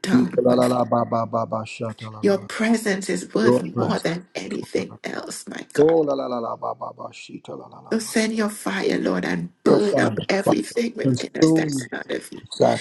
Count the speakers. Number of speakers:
2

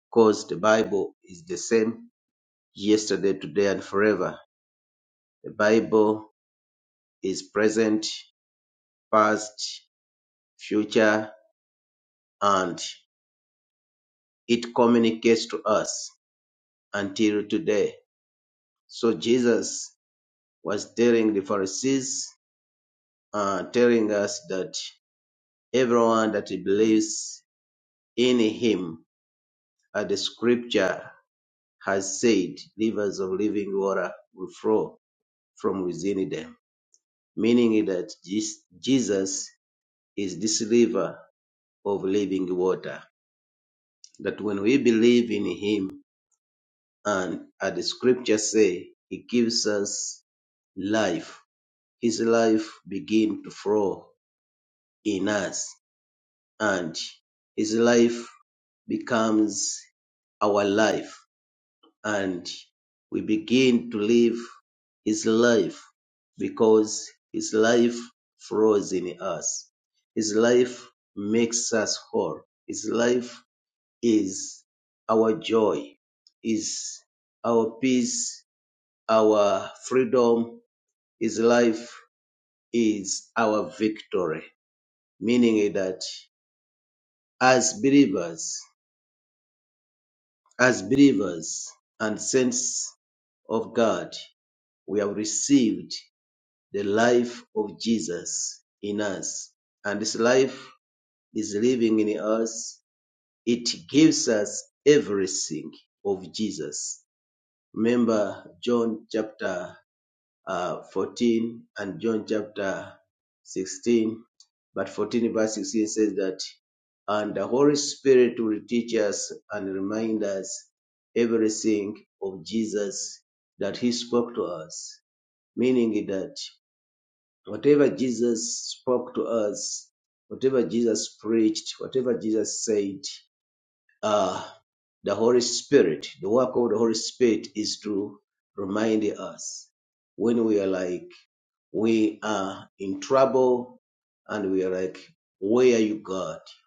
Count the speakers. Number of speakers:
1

